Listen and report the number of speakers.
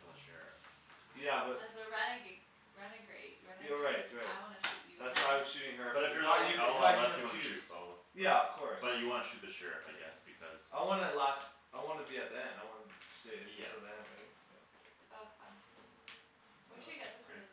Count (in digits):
3